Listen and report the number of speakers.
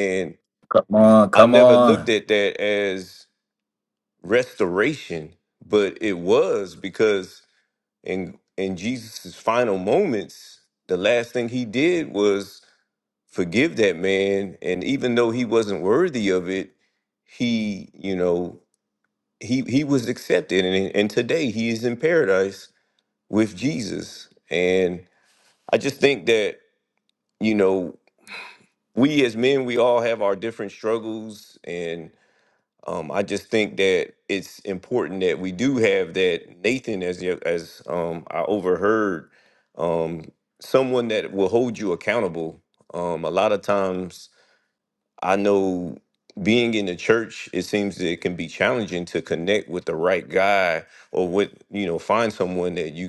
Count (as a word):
two